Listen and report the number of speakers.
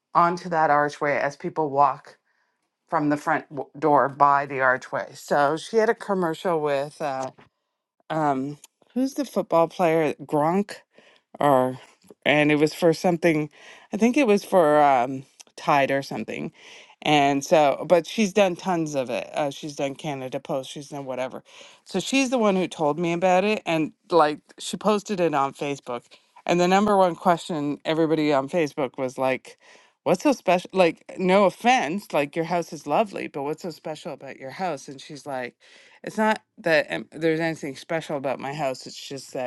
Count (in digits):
1